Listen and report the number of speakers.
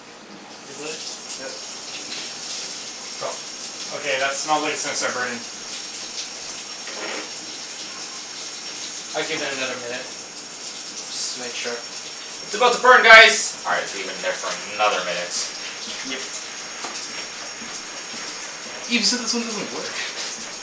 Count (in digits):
4